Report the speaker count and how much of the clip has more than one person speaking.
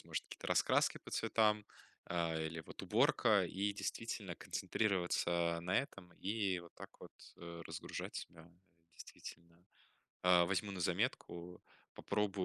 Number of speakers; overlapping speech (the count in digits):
1, no overlap